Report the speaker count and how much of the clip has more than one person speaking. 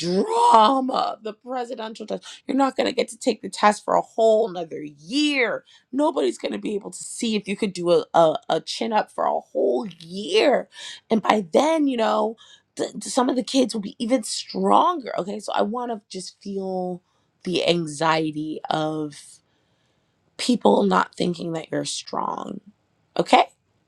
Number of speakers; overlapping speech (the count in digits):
1, no overlap